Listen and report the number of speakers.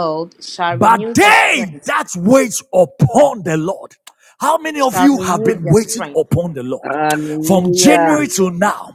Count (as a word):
three